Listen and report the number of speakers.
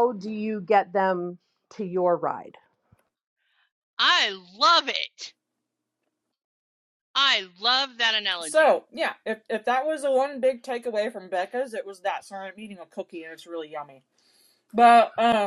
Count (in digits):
3